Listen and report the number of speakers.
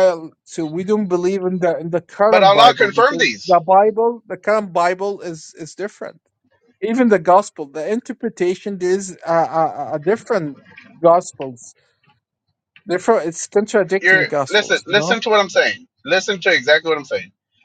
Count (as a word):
two